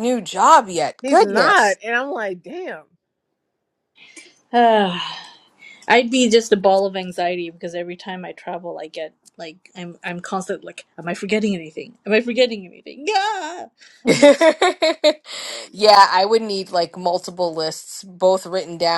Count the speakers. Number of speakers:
three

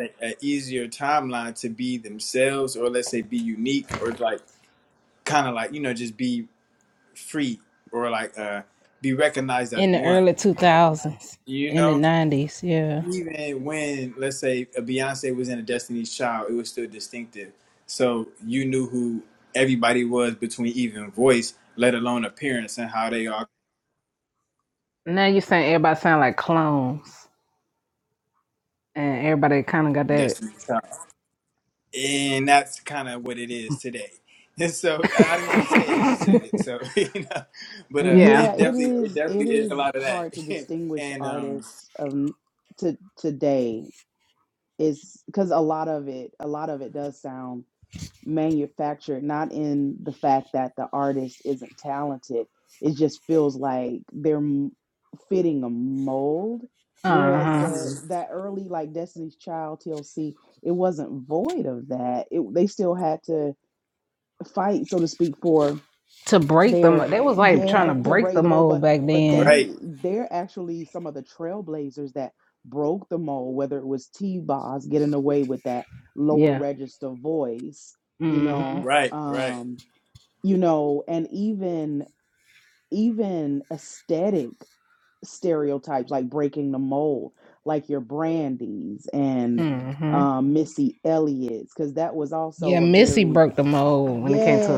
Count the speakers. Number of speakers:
three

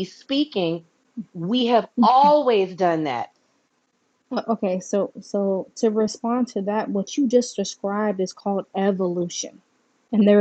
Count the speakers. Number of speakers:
two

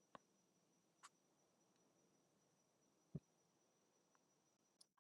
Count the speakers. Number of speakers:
zero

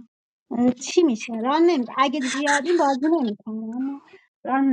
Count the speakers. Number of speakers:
one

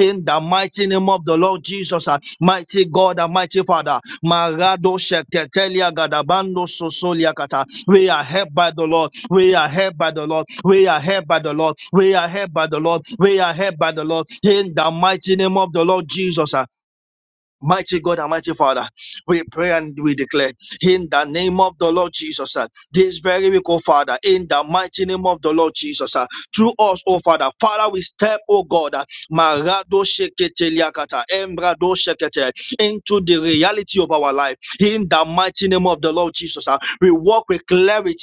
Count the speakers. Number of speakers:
one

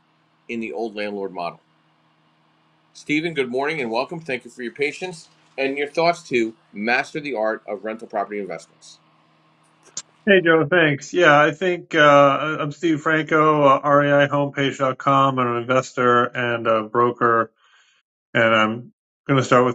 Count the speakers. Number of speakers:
two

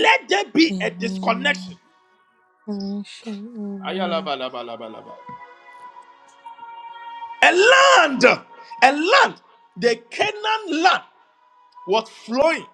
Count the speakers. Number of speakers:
two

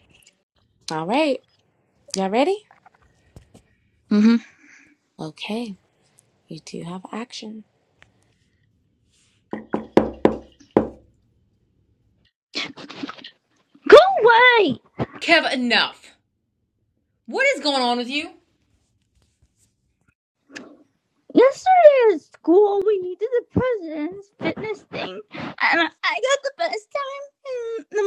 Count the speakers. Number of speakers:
three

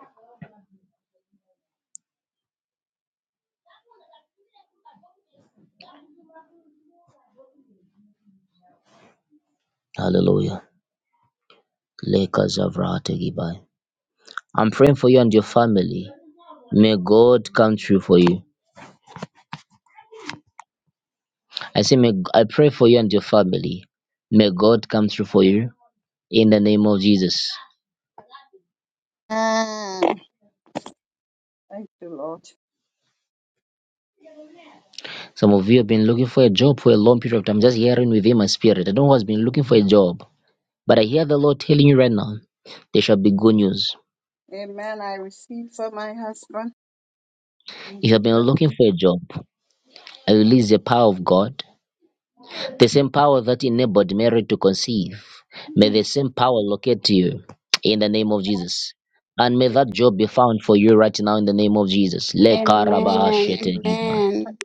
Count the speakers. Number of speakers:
three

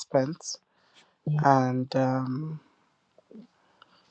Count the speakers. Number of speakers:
one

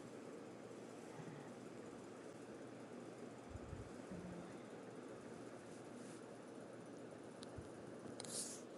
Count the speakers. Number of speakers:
zero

